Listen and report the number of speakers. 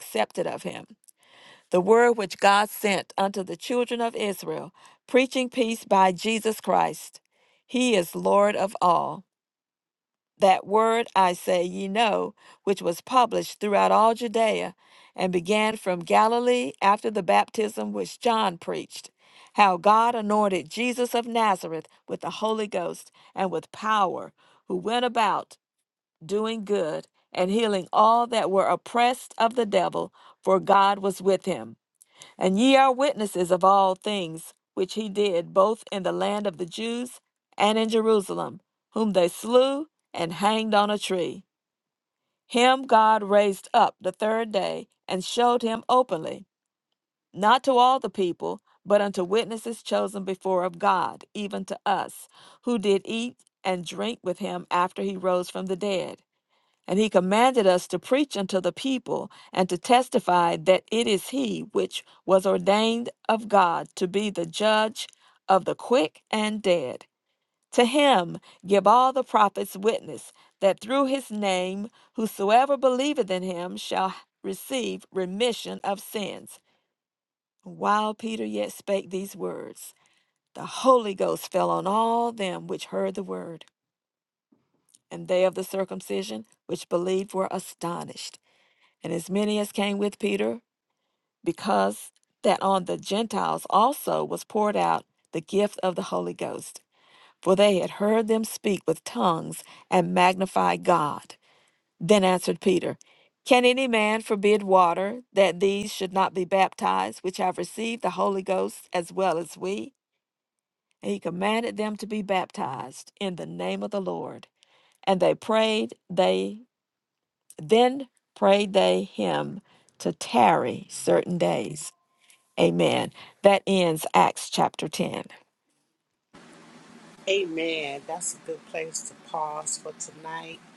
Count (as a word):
two